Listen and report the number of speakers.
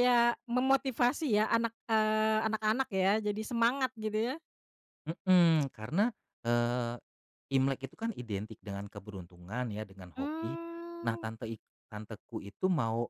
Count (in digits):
2